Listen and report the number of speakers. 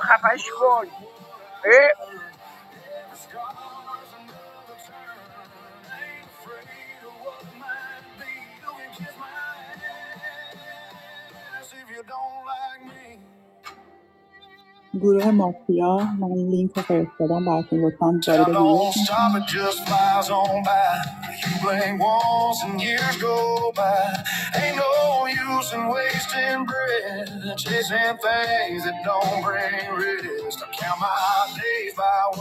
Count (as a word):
three